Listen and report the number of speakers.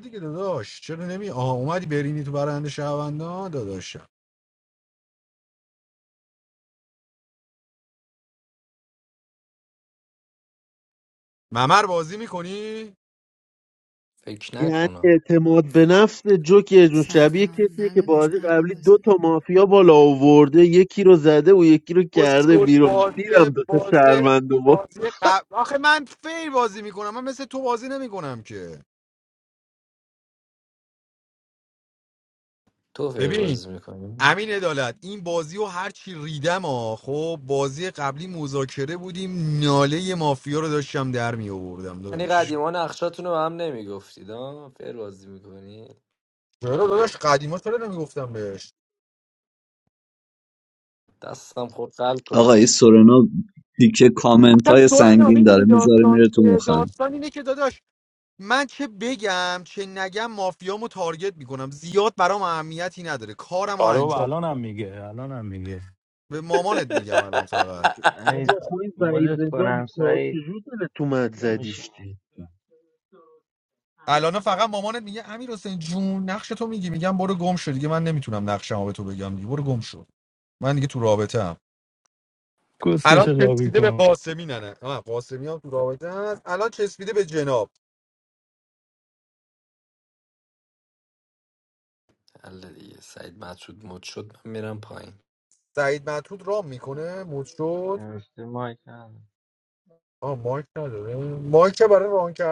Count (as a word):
six